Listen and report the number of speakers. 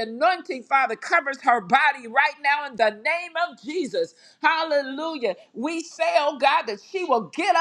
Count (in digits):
1